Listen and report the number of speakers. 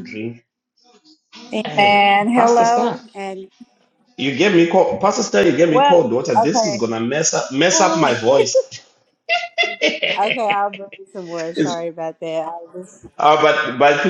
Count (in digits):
2